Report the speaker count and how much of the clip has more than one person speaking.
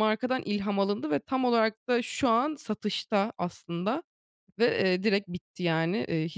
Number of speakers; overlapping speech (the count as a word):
one, no overlap